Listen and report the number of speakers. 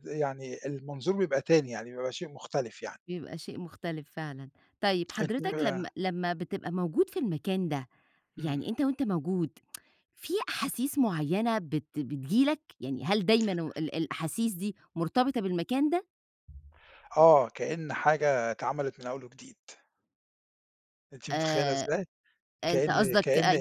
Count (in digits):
2